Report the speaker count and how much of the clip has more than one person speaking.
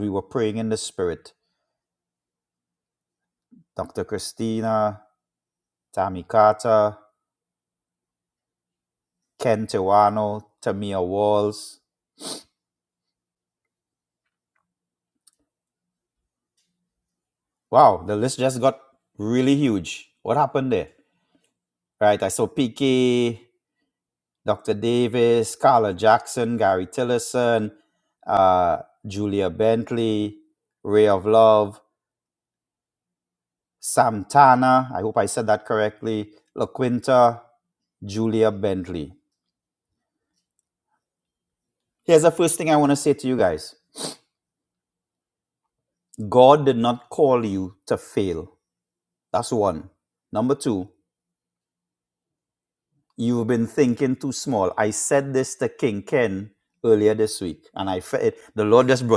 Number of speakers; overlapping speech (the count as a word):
one, no overlap